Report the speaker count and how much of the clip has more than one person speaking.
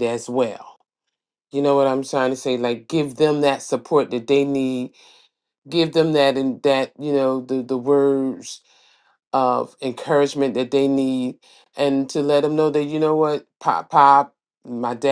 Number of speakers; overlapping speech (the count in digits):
1, no overlap